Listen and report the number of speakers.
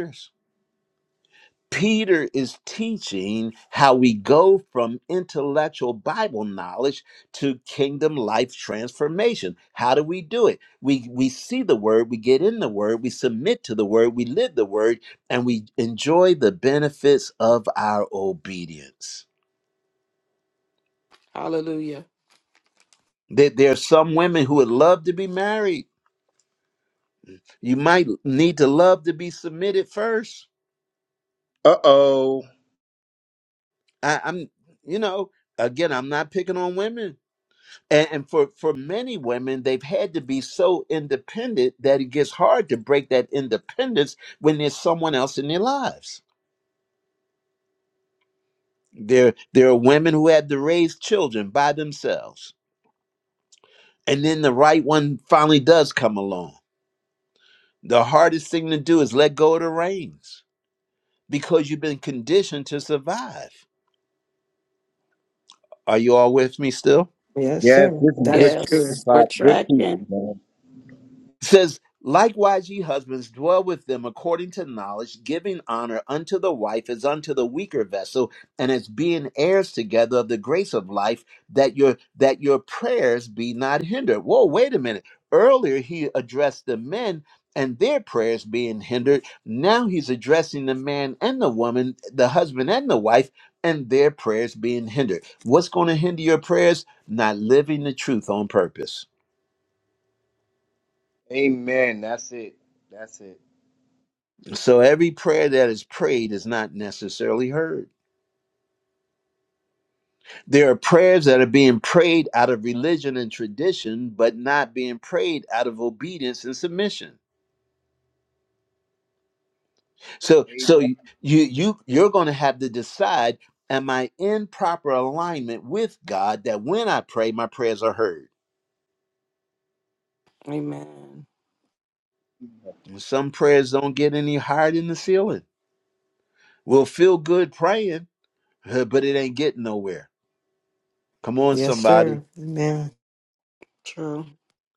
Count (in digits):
4